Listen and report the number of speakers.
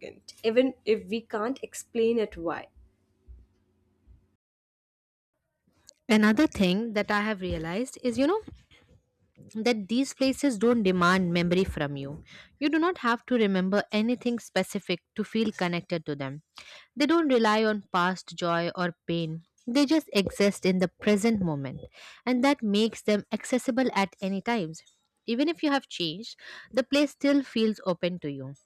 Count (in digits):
2